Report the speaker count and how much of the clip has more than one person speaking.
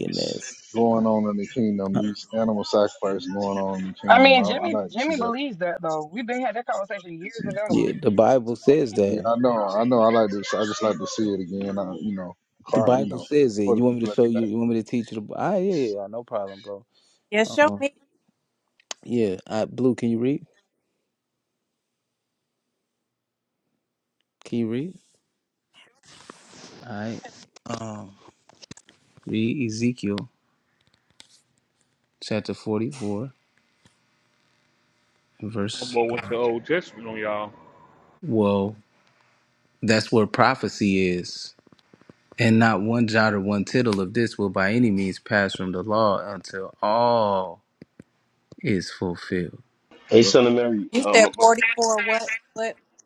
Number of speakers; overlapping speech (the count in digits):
6, about 8%